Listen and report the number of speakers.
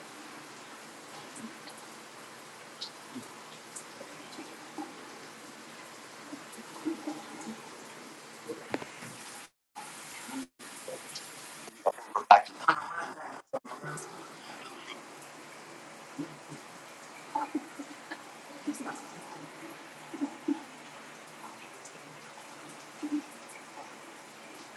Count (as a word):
zero